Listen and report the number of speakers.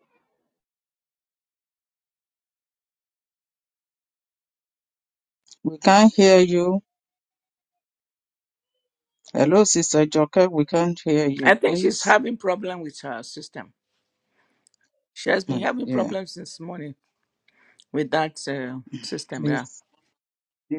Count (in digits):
2